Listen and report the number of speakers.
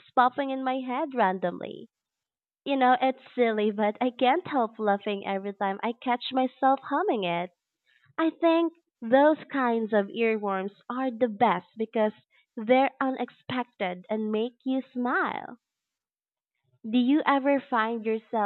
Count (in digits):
1